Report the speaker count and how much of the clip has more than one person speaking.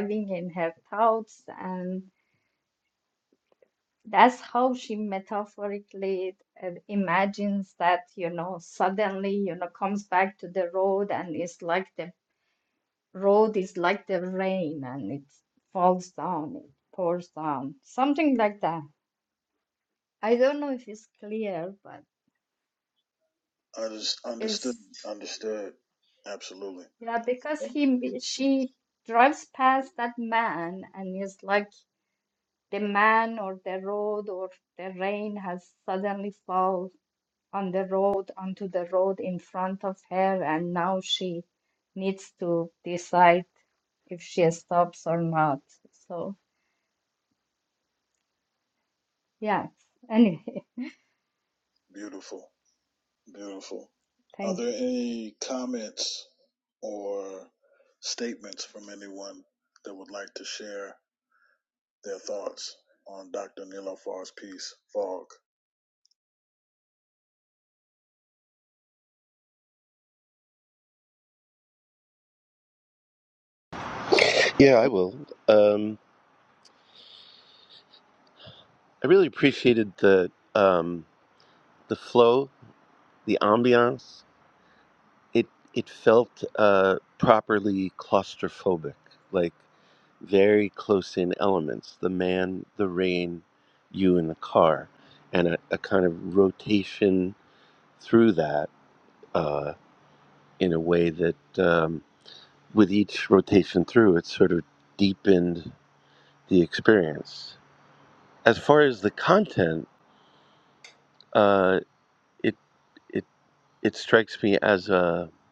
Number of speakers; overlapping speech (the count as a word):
three, under 1%